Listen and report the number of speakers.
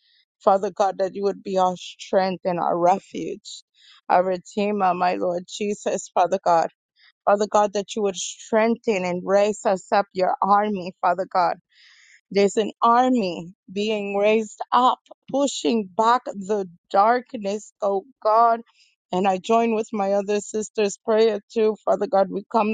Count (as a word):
one